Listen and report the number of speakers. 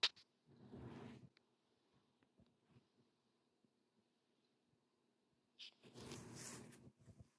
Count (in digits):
0